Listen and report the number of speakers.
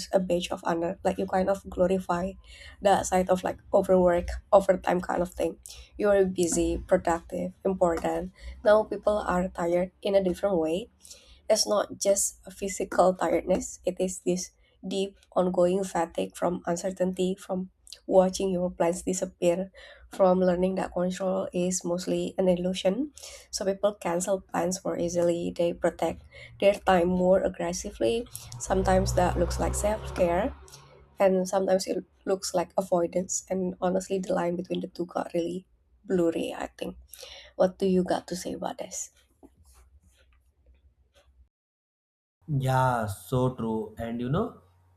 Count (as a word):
two